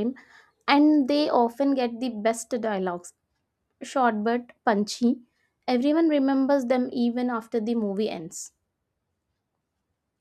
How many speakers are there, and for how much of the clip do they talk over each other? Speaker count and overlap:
one, no overlap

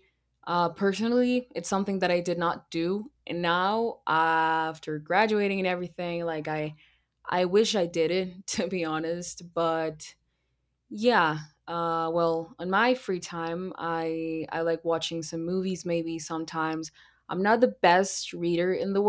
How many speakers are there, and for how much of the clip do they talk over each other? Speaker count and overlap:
one, no overlap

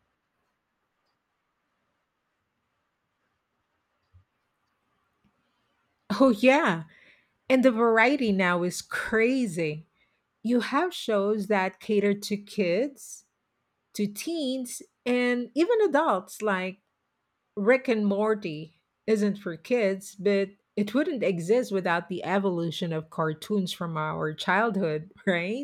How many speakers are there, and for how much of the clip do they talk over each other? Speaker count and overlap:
one, no overlap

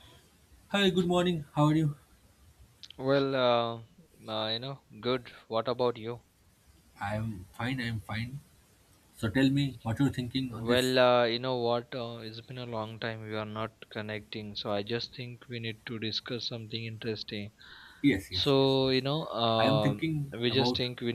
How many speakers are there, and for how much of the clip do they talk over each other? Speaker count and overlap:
two, about 10%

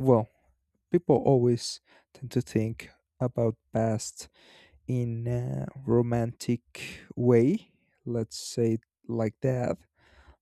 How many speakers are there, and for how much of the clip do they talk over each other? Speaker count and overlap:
one, no overlap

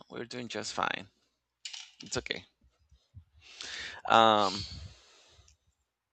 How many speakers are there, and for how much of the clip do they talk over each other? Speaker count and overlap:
one, no overlap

